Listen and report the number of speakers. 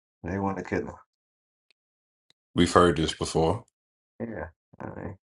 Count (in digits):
2